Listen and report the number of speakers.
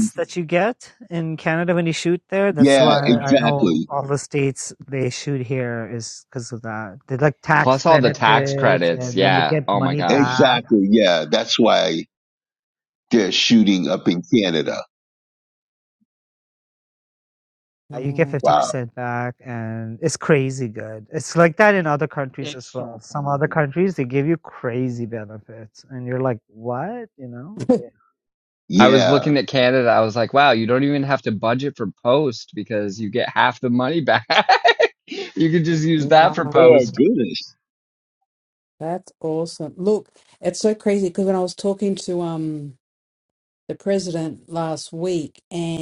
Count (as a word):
four